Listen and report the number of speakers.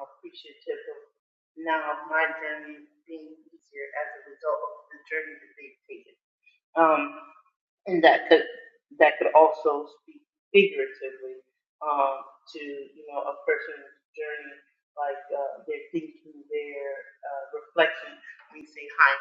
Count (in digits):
1